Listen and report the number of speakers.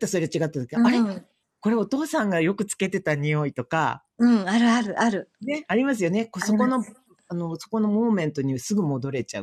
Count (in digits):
2